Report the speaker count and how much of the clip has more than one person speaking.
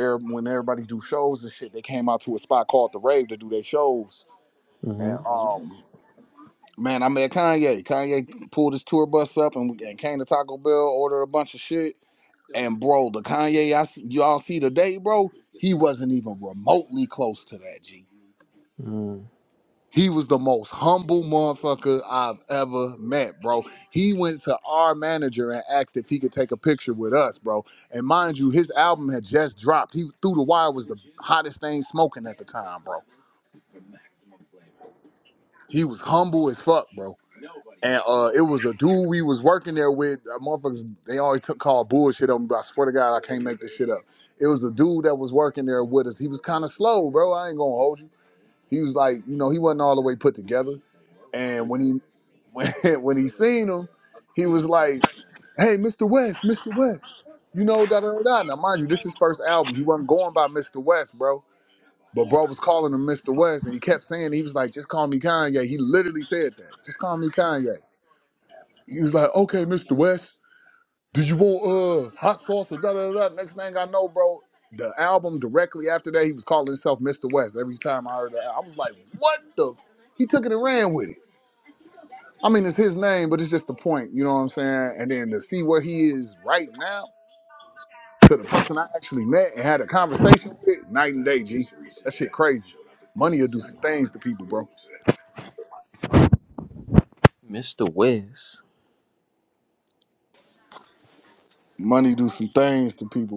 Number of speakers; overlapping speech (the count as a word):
two, under 1%